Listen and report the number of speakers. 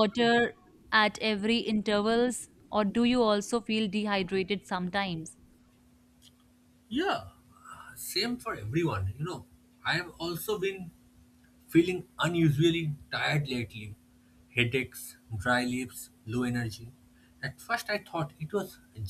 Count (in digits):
2